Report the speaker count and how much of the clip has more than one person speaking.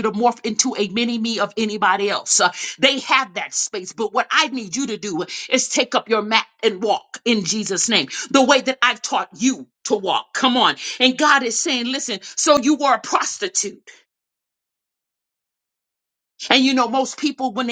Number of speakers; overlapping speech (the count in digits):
1, no overlap